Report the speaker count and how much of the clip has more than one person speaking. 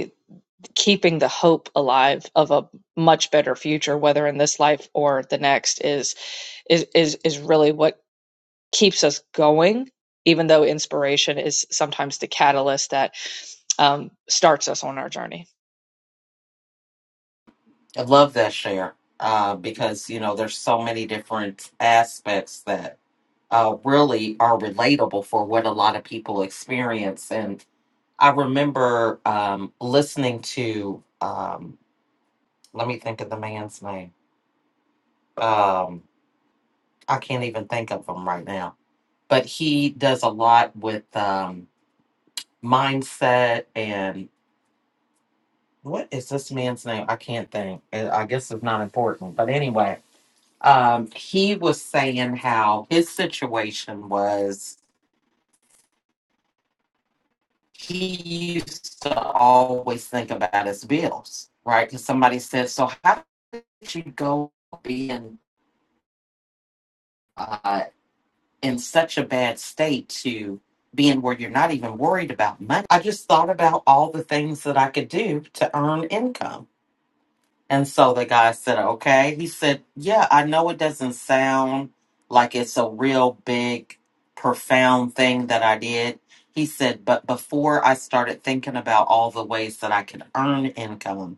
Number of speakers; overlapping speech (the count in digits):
2, no overlap